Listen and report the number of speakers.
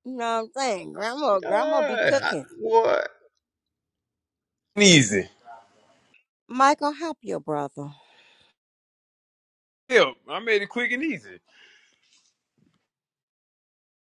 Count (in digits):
3